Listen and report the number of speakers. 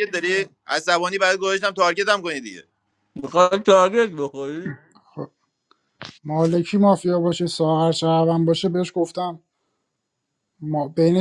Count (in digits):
3